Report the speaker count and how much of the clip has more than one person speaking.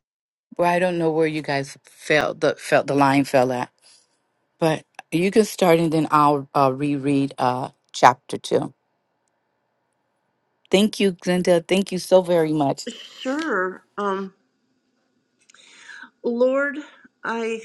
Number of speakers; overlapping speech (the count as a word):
two, no overlap